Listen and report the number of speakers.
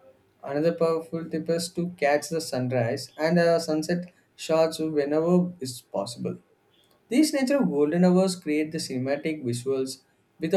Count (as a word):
one